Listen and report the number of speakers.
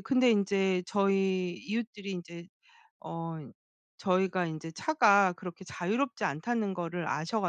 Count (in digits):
1